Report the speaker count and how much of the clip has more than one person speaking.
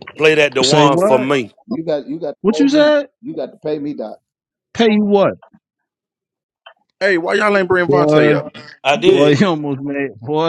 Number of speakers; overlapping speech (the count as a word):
four, about 24%